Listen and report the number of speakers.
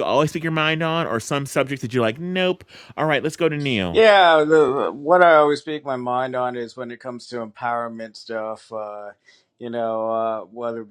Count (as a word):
two